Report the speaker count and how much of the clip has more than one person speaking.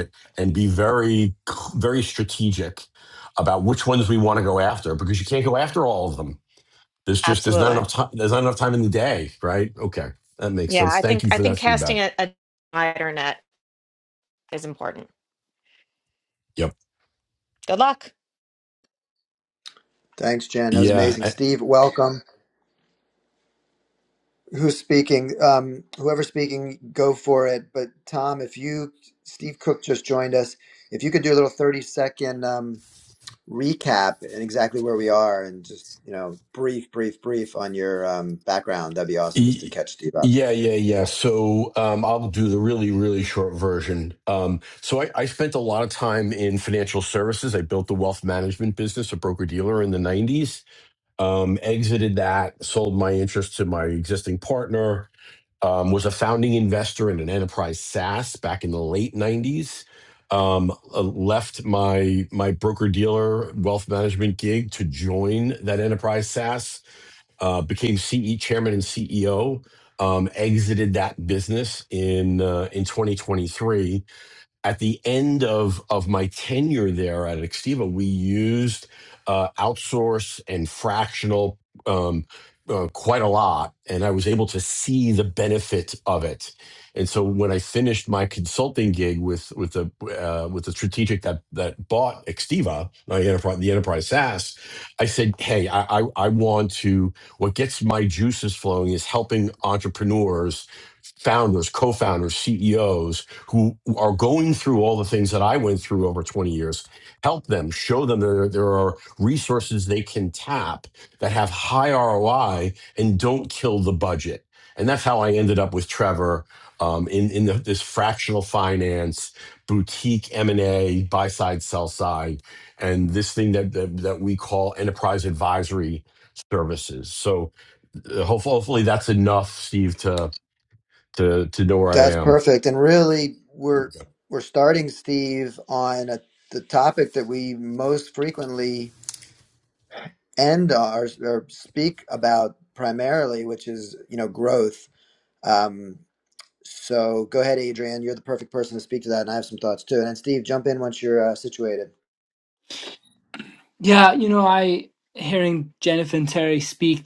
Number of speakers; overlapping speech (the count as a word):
four, about 2%